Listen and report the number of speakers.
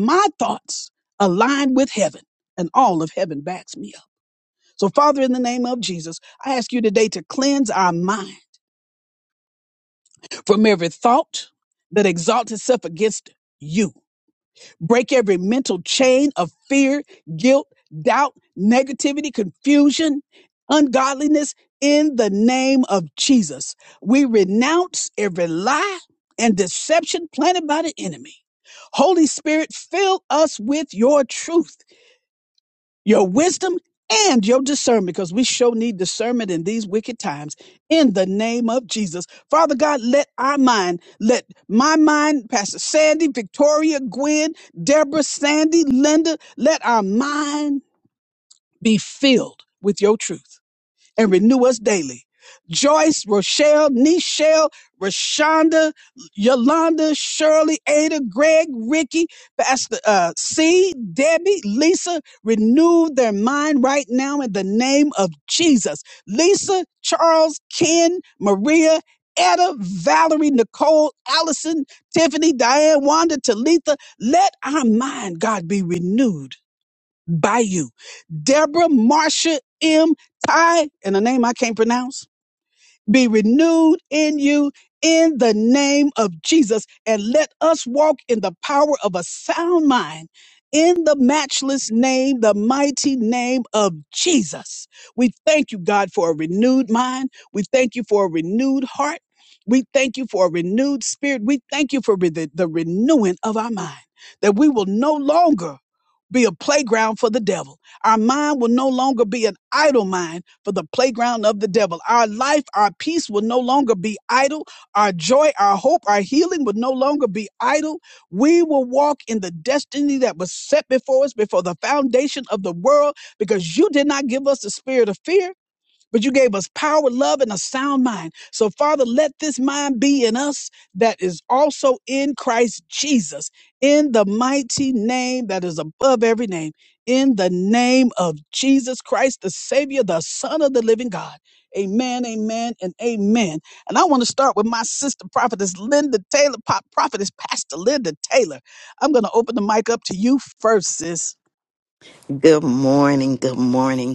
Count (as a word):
two